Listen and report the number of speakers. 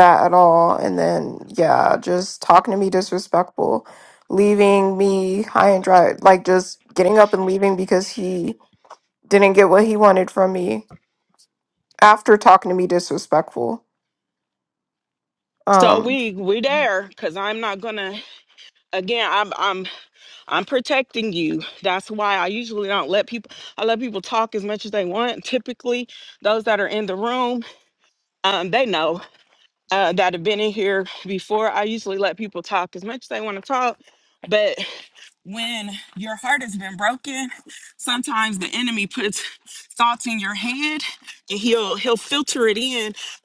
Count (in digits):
2